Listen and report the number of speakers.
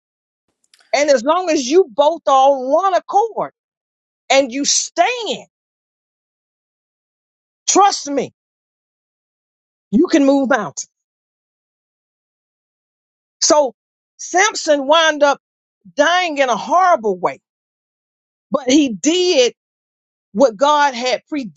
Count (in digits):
1